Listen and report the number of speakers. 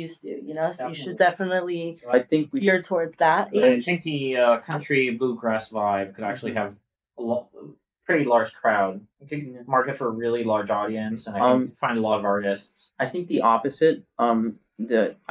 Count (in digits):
3